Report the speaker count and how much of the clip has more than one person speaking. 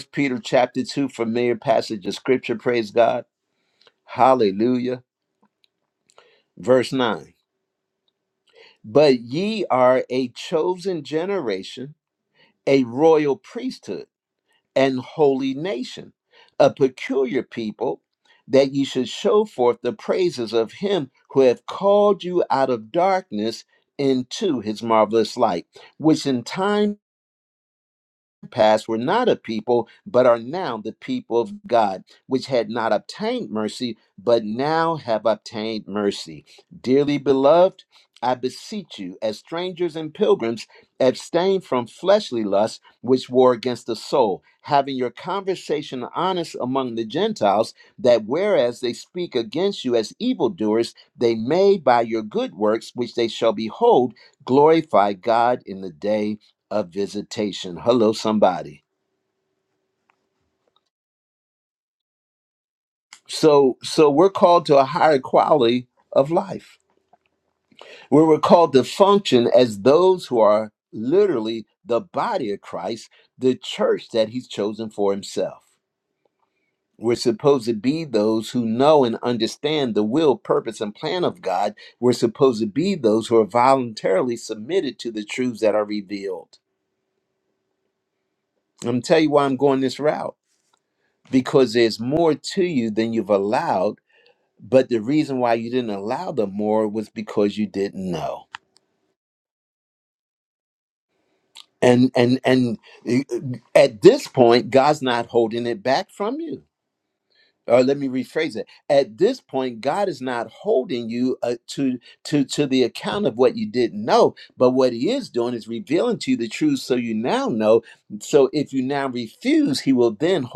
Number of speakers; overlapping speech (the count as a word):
one, no overlap